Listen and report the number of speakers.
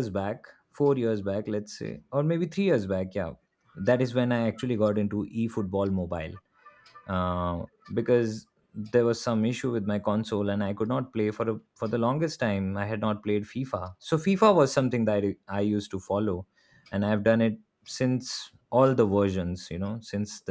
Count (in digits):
1